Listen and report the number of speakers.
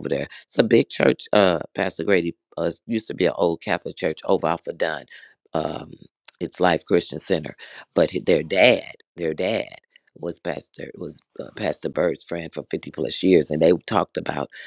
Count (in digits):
1